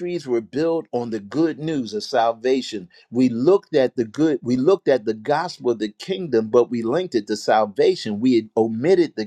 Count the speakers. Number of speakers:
1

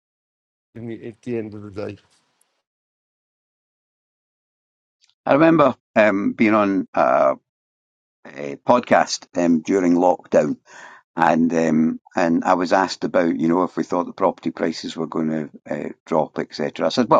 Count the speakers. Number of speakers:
2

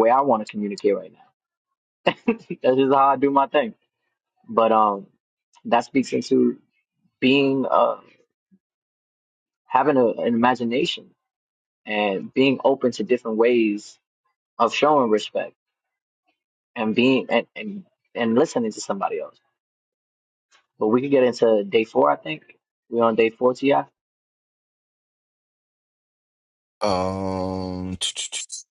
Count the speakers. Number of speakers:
2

